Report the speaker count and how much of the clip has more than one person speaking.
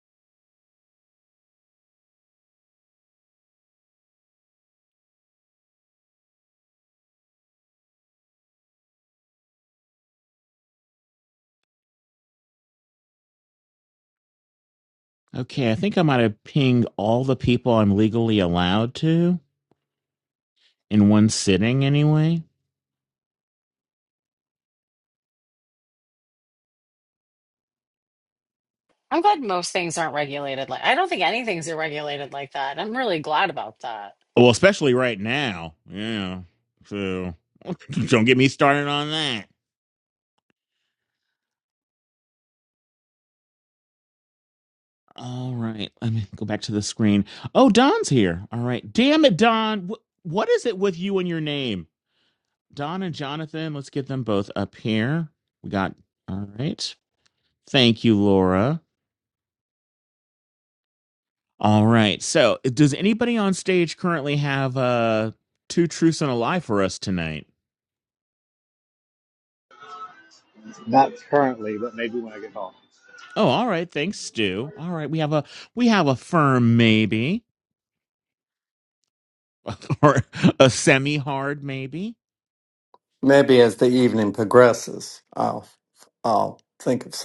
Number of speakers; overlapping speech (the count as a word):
four, no overlap